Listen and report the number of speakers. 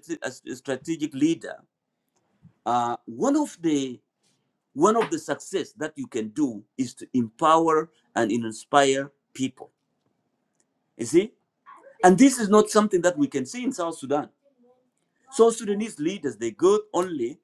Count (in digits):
1